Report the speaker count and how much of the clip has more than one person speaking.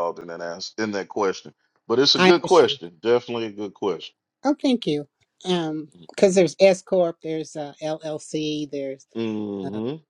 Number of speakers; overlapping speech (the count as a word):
two, about 8%